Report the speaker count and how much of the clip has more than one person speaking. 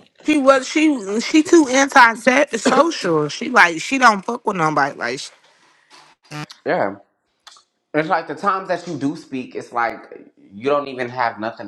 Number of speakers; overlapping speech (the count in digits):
2, no overlap